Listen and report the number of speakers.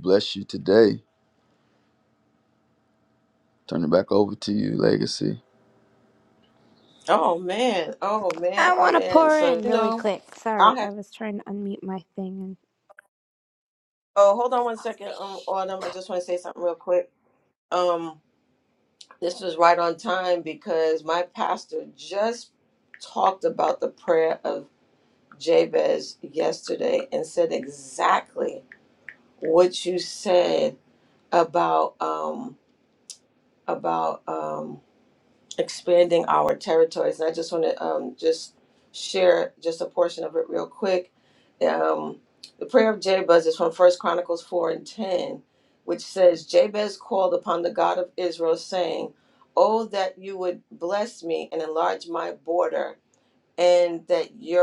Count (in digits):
3